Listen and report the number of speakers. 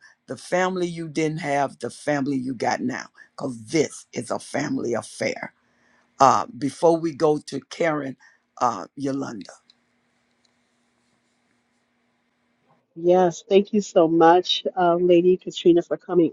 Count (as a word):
two